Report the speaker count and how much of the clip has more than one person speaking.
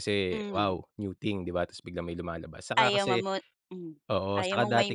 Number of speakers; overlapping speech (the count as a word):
two, about 31%